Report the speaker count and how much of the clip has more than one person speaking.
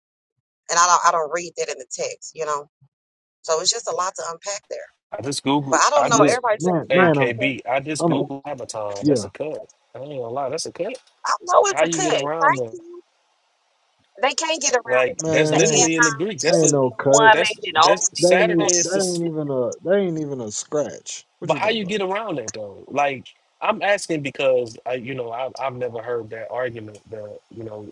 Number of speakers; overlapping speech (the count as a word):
three, about 28%